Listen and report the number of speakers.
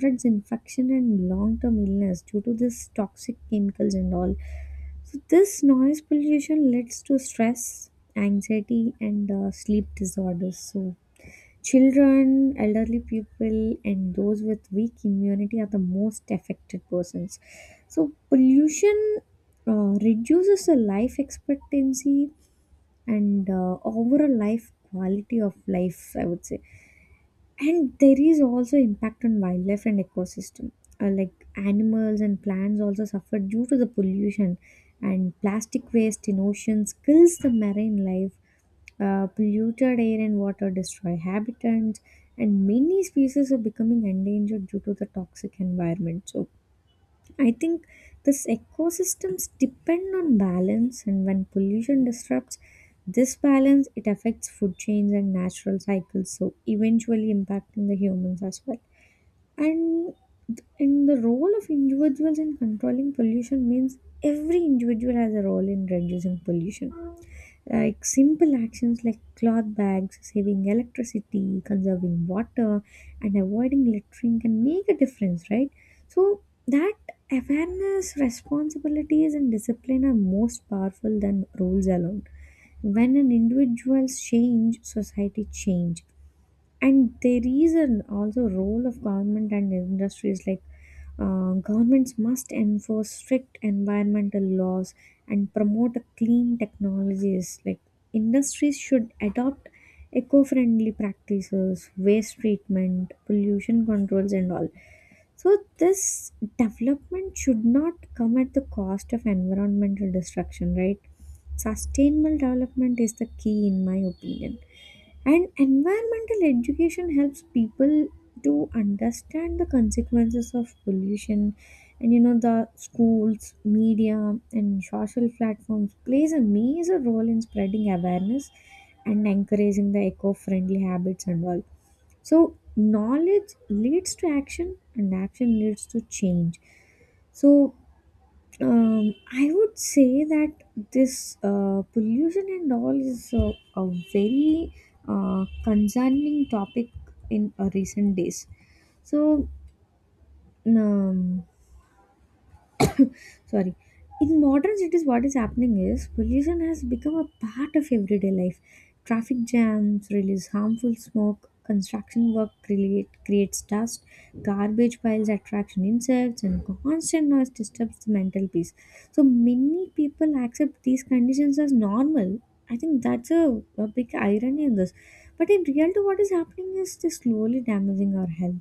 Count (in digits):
1